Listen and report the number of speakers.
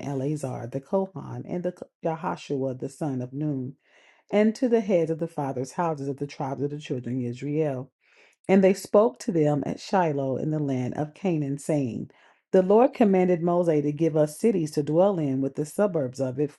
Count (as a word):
one